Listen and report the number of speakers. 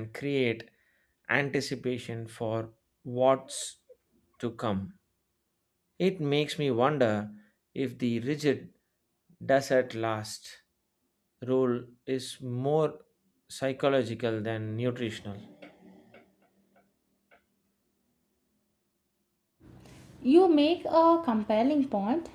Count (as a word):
two